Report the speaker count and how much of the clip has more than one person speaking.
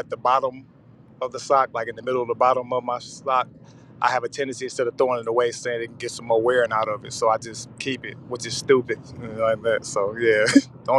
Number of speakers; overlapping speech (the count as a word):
one, no overlap